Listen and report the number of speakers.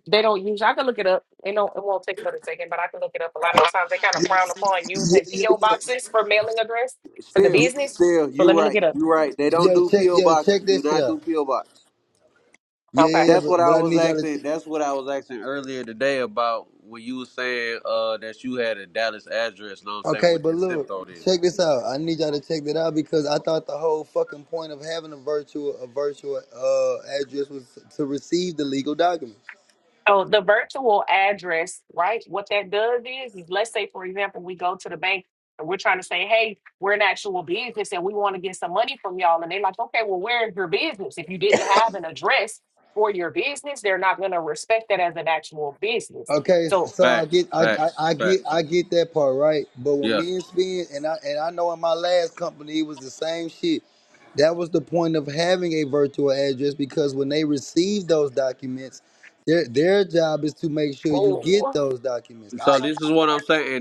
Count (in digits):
3